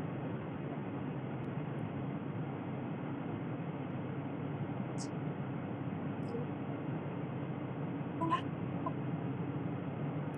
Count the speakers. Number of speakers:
0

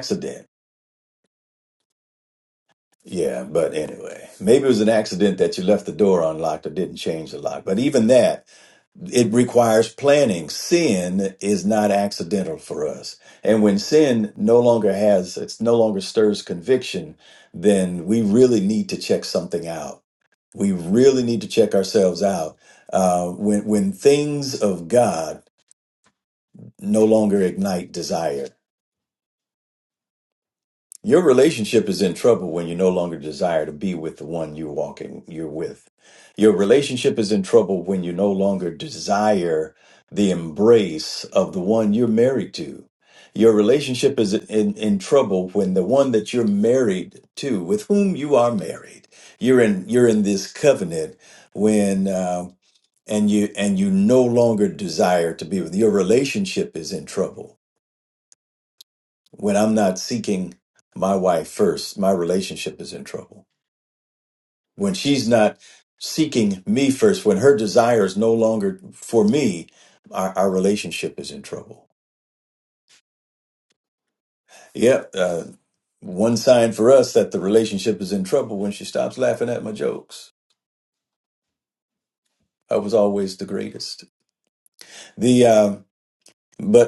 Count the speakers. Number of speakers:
1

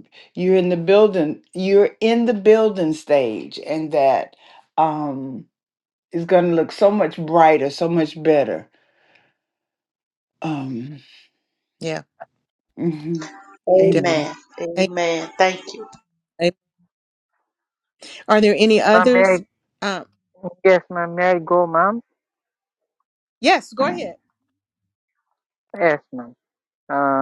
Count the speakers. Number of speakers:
4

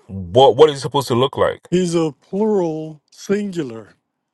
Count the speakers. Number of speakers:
2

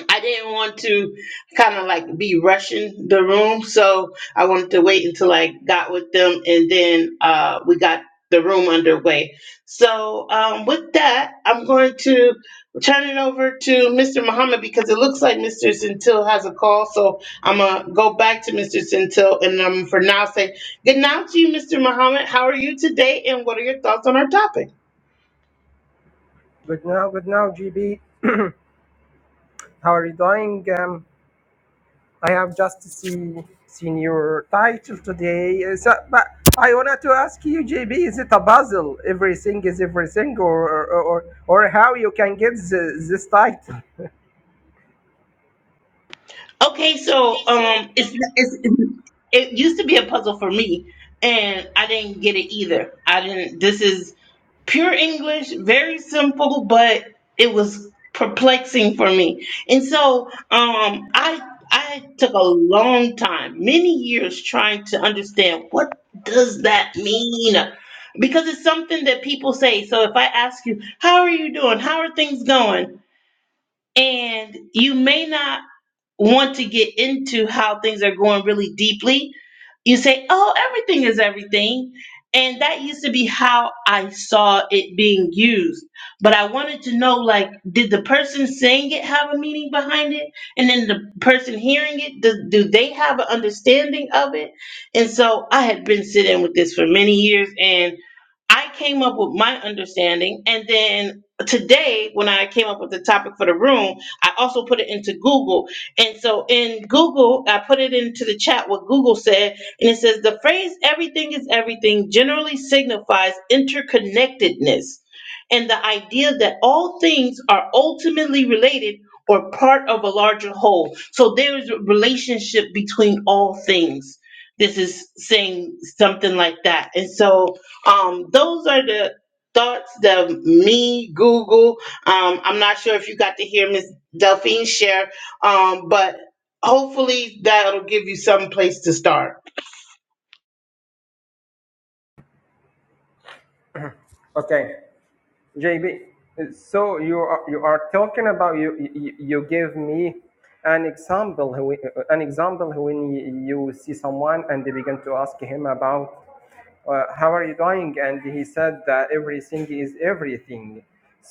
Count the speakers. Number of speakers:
2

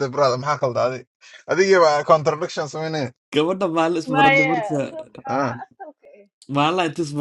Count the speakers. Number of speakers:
3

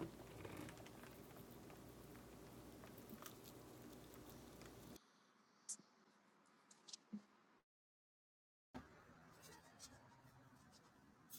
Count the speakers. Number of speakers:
0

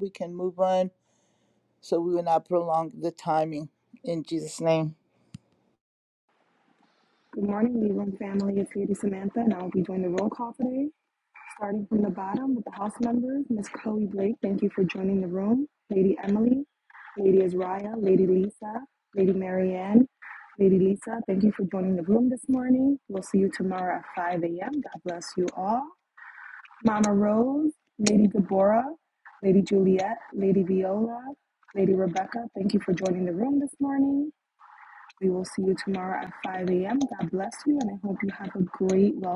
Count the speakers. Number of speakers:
2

